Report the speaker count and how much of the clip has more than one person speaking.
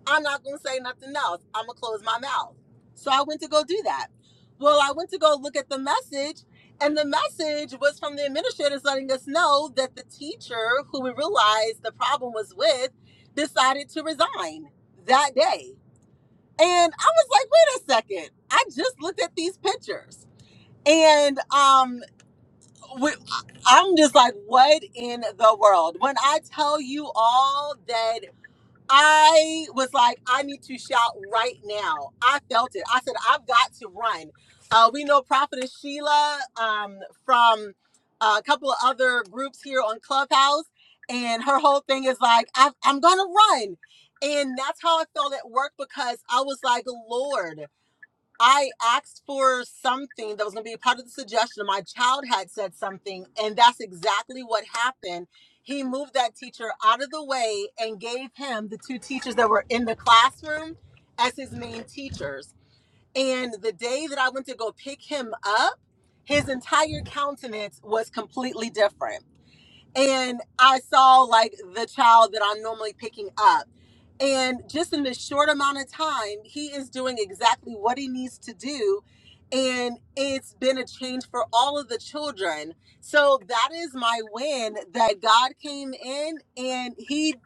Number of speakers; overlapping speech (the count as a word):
one, no overlap